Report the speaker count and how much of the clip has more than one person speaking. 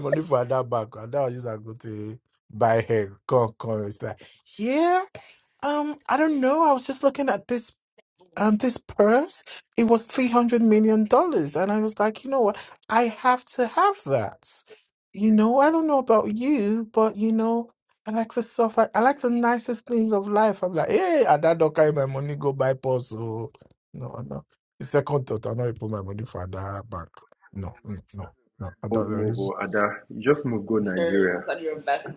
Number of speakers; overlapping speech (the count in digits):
3, about 4%